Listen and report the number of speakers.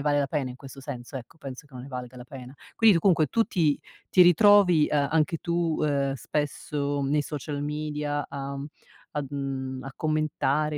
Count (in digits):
1